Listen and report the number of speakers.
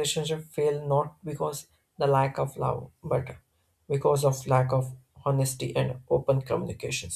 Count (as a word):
one